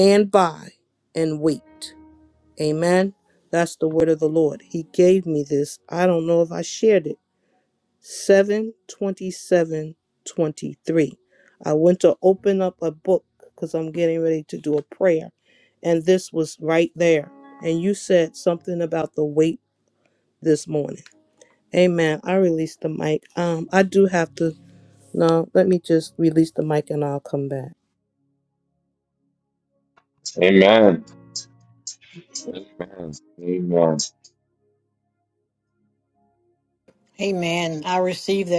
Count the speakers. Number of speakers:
three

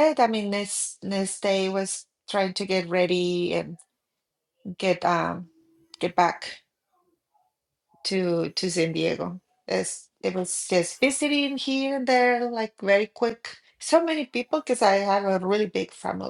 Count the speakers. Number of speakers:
one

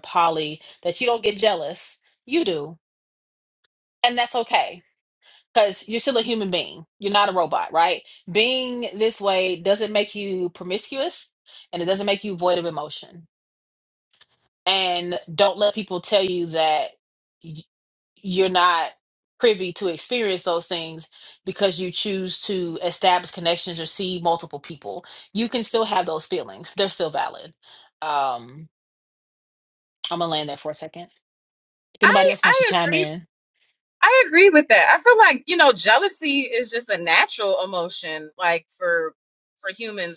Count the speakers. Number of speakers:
two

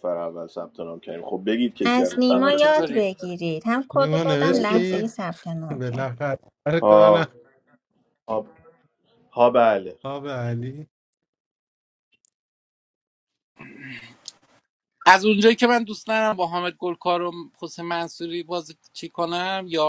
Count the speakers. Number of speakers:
four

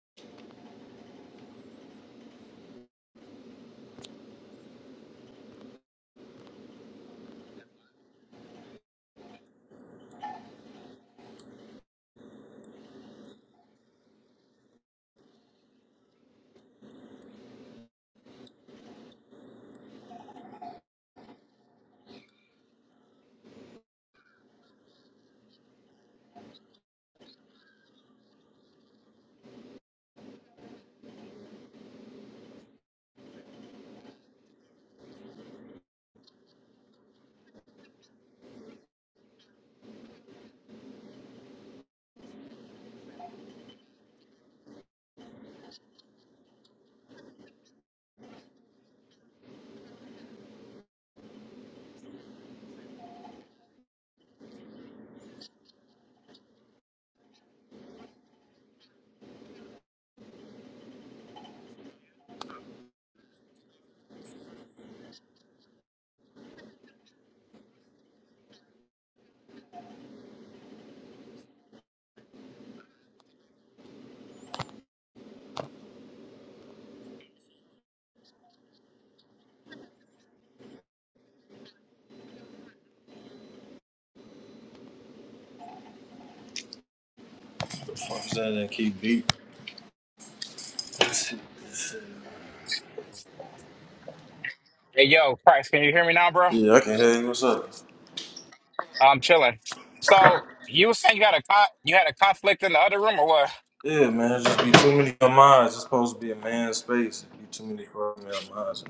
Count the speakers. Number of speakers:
two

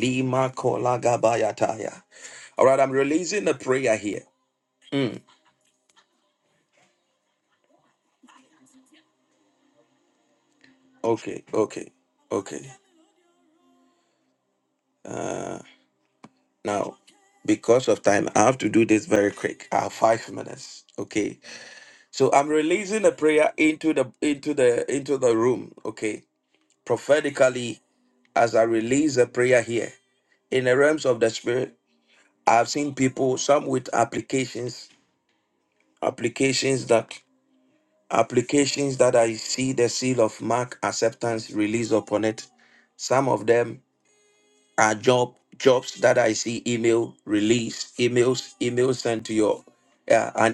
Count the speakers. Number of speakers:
one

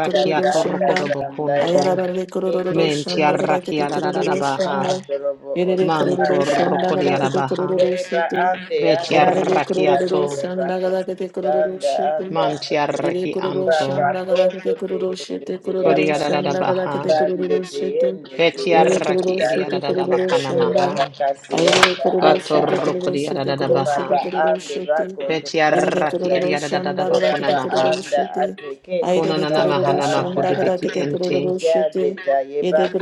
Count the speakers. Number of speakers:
three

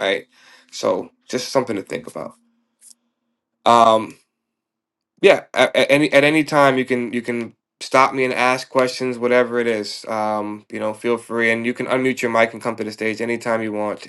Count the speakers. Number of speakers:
one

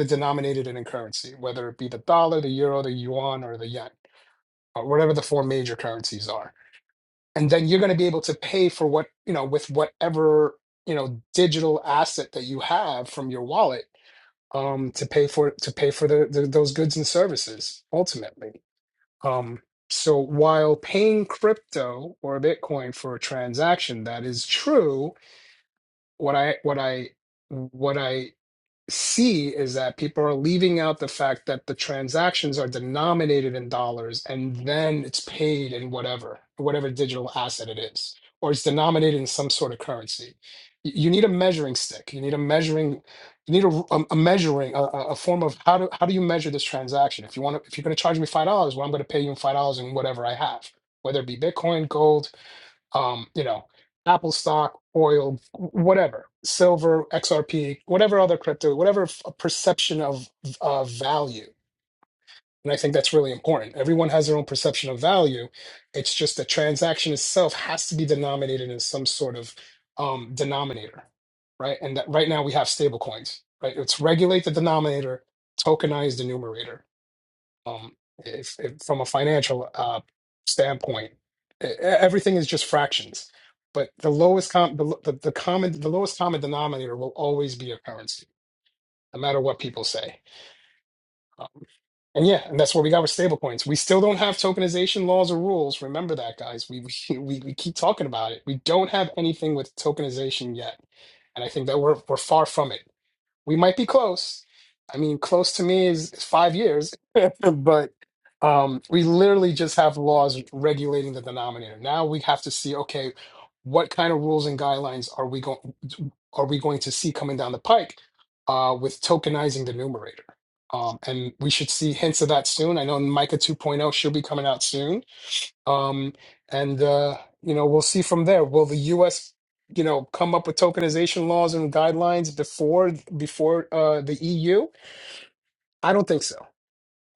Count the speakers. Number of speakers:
one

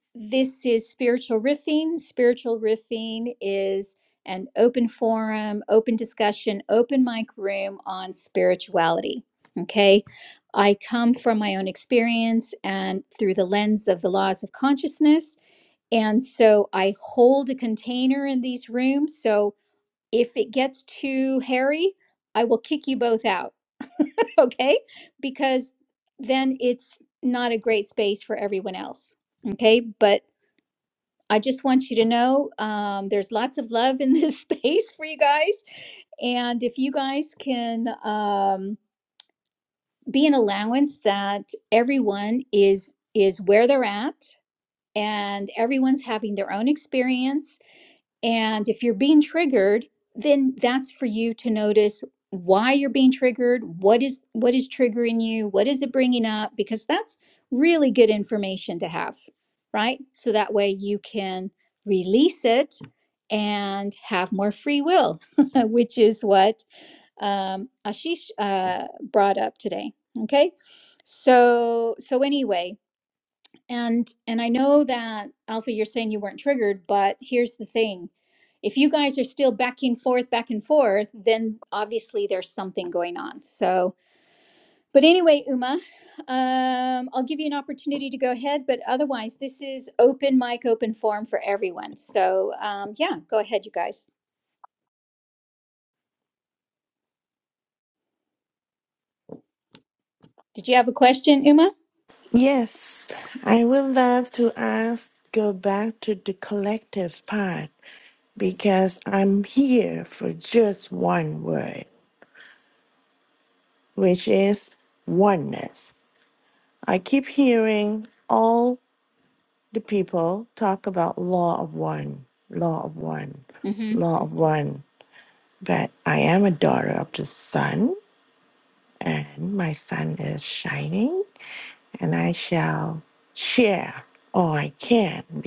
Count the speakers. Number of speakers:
two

